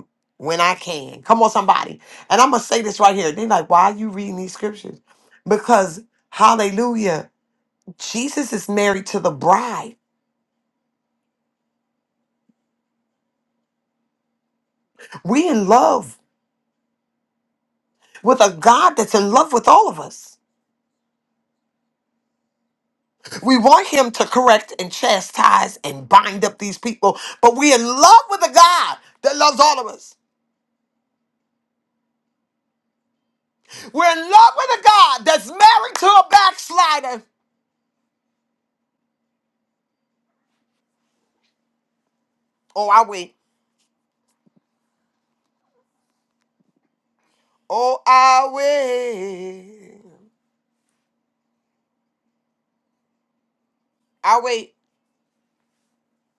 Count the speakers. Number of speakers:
1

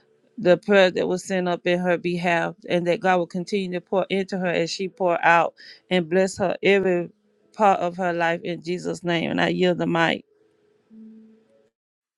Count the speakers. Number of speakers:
1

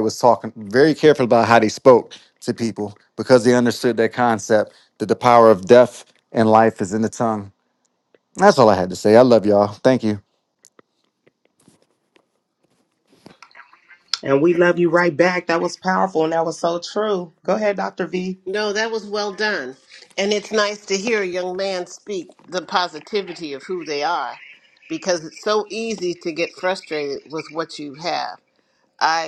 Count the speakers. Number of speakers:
3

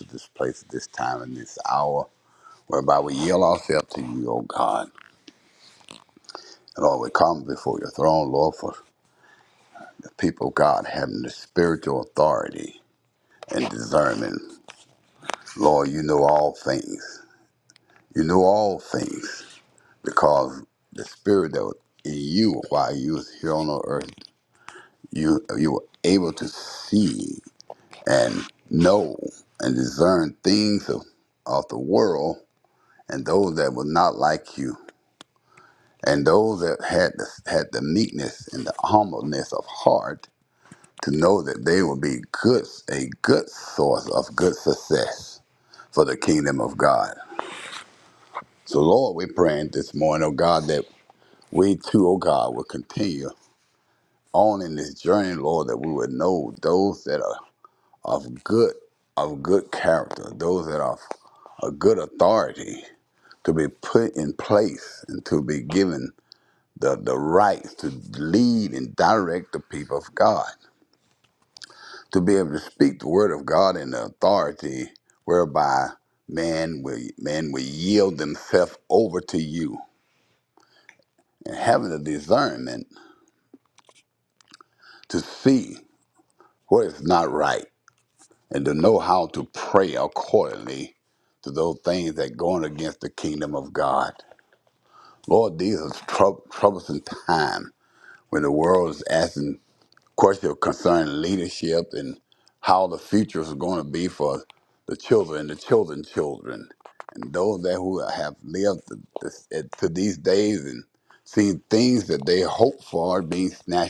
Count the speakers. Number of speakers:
1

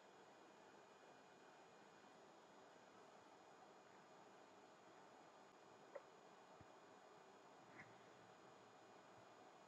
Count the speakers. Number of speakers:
0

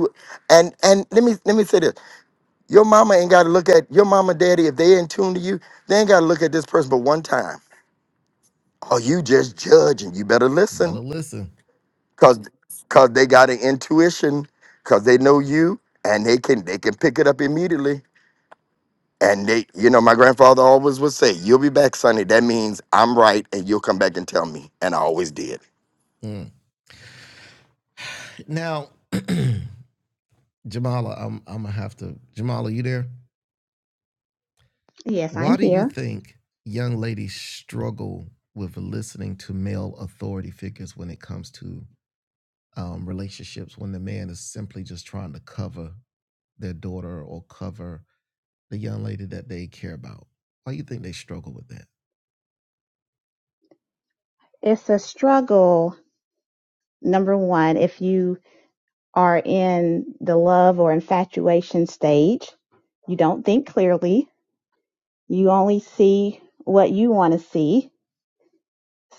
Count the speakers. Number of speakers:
3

